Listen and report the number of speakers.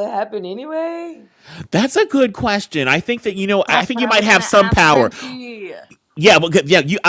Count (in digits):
3